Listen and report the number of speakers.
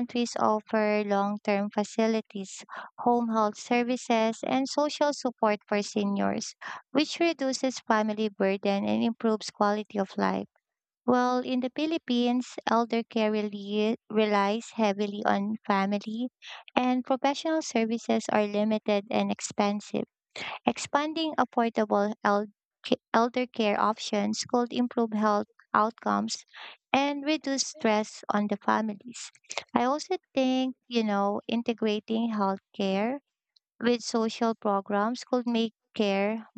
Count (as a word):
one